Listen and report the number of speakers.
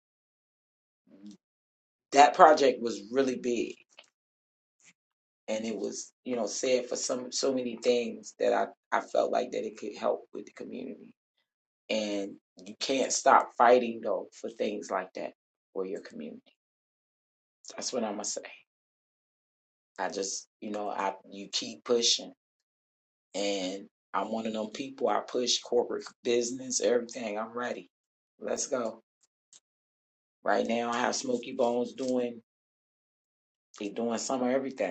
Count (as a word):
one